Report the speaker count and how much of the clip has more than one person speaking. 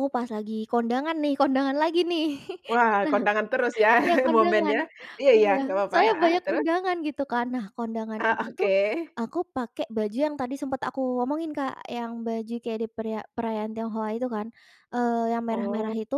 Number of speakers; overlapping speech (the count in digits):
2, about 17%